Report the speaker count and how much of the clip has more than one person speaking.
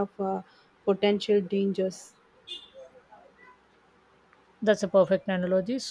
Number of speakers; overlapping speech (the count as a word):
two, no overlap